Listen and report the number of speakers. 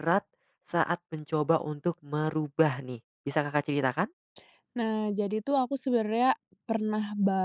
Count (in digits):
2